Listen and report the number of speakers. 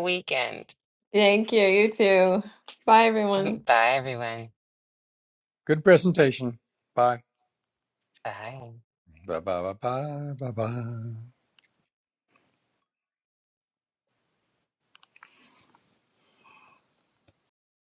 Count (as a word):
three